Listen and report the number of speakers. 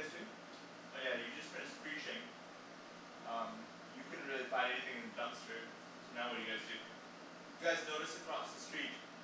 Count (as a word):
one